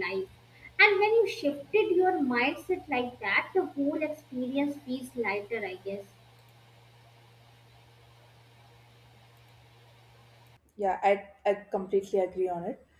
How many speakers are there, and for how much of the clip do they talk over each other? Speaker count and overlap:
2, no overlap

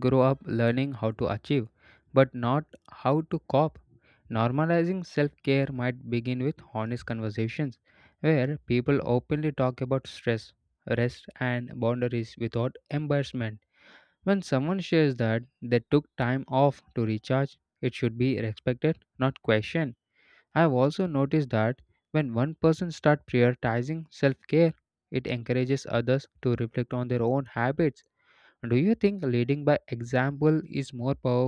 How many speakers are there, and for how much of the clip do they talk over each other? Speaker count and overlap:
1, no overlap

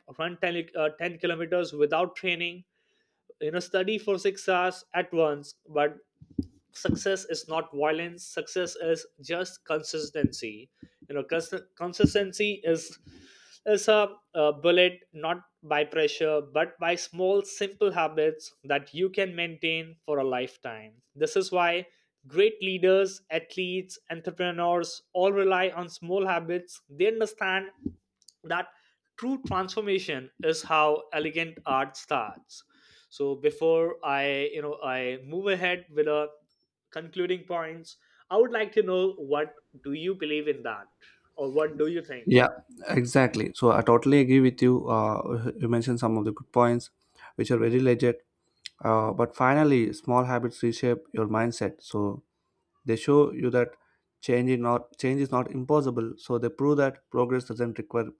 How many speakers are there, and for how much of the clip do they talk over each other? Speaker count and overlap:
2, no overlap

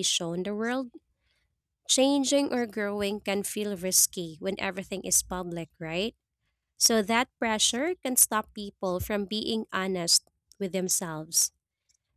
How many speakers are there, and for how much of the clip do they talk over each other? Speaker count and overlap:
1, no overlap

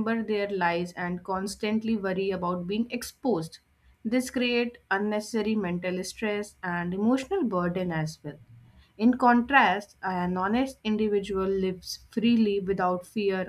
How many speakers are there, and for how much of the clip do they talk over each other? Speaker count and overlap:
1, no overlap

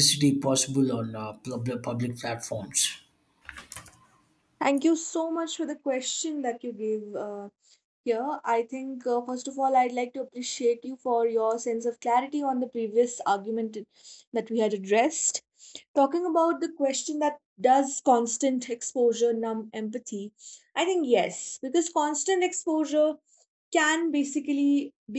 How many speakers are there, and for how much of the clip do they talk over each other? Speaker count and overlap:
2, no overlap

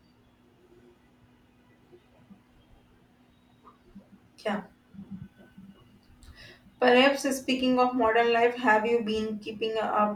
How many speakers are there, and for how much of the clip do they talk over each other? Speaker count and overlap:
1, no overlap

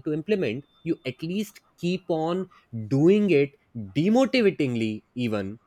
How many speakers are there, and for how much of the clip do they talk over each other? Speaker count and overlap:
1, no overlap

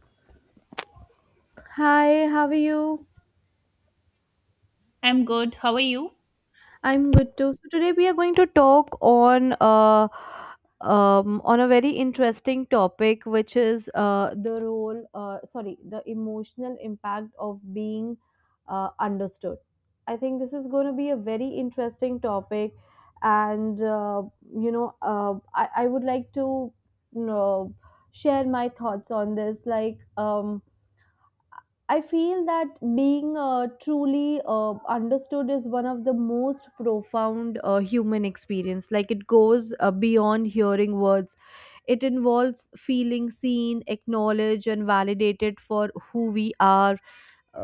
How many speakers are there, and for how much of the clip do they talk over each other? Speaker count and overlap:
2, no overlap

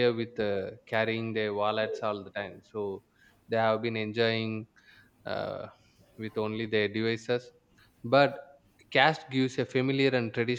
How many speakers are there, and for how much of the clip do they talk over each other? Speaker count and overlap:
1, no overlap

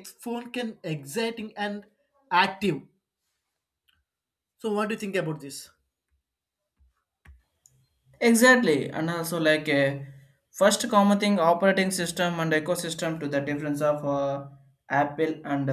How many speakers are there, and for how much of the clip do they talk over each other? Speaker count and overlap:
2, no overlap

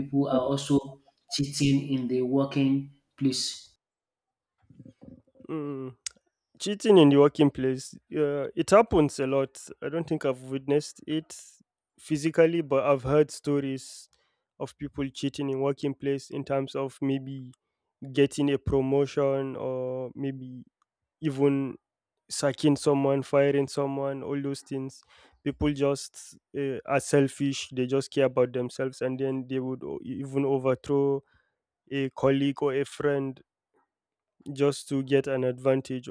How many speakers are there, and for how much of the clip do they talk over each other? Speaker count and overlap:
2, no overlap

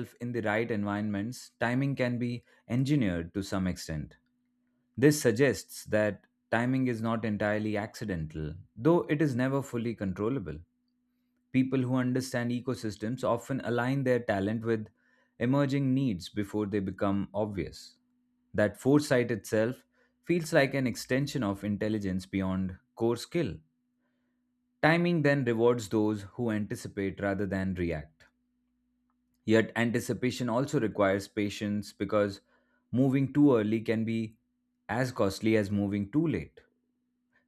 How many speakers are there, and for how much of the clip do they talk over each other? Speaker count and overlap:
1, no overlap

